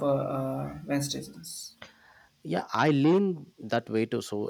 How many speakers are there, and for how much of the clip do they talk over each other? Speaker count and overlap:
2, no overlap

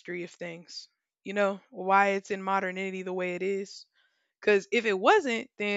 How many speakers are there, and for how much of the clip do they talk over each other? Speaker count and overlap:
1, no overlap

